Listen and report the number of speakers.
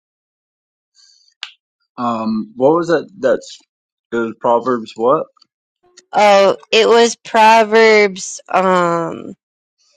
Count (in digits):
2